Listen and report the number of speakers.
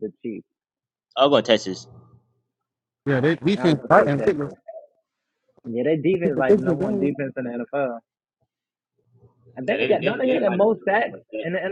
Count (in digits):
3